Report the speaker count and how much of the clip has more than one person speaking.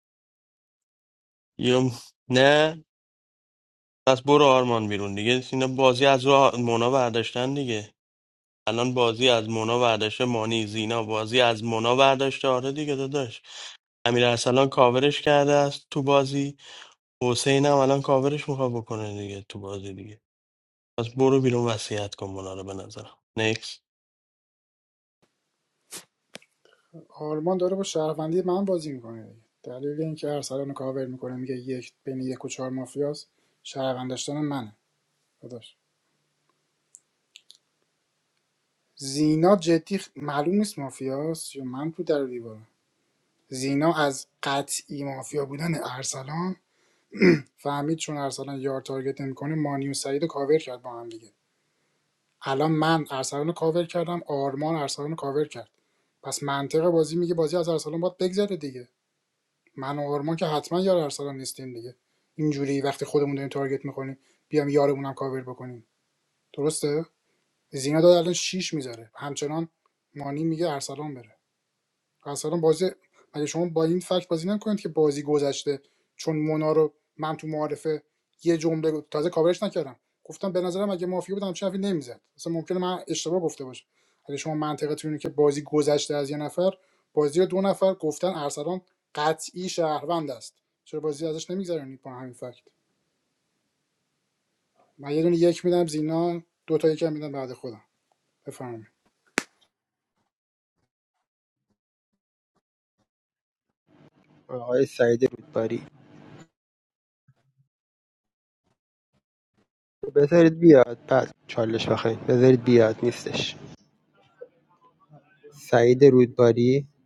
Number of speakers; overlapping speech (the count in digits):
3, no overlap